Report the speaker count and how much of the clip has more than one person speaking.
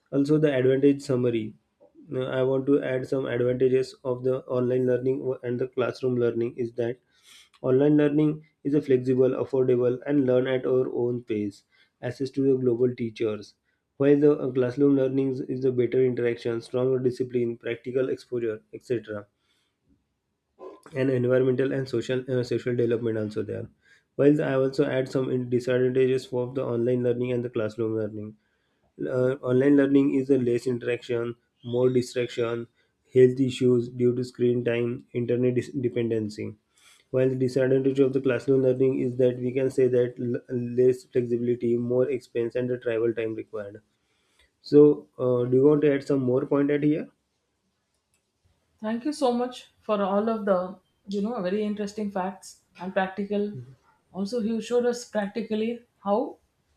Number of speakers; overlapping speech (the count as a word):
two, no overlap